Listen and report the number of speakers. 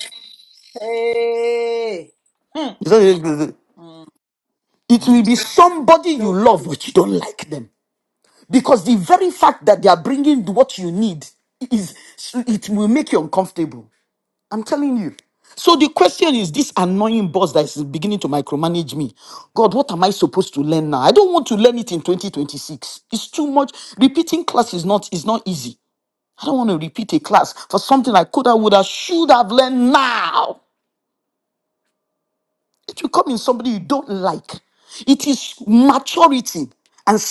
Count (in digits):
2